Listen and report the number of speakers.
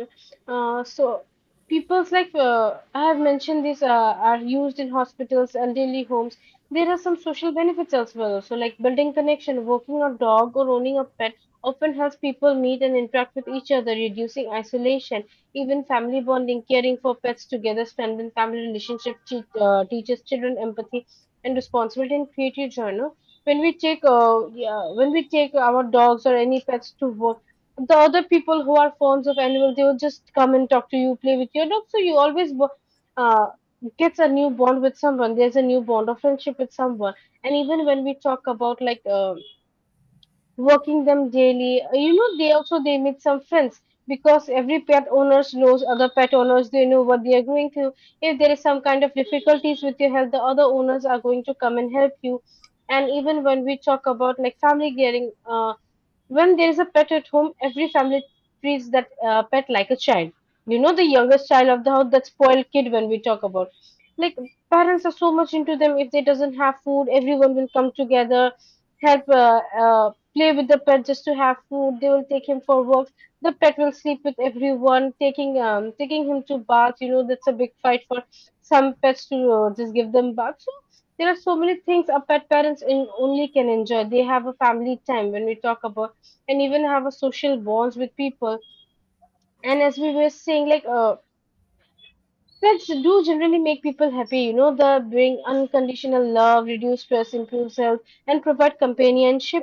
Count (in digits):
1